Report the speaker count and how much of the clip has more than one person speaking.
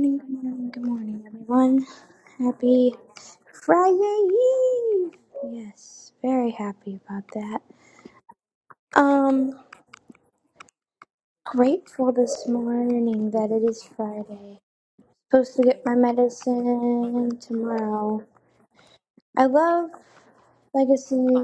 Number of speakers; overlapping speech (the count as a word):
one, no overlap